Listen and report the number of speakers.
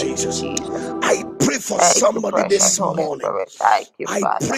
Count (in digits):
2